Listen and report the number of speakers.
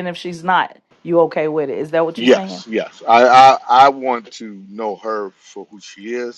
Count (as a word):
two